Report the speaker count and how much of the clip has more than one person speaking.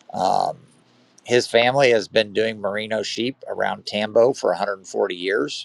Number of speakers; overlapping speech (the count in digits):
1, no overlap